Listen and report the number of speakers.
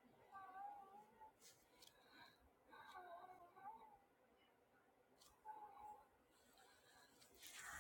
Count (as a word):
zero